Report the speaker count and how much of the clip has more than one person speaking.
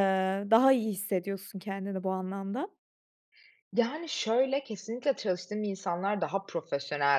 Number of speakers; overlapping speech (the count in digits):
2, no overlap